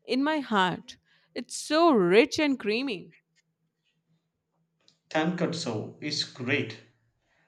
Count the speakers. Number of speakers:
2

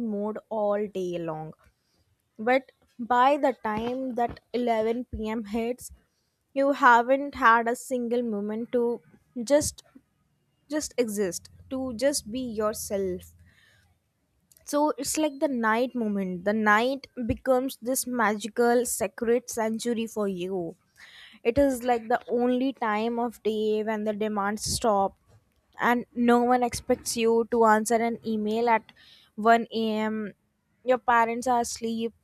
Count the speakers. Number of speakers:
1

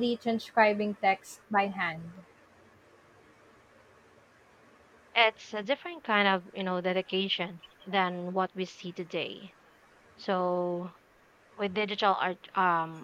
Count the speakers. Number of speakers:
2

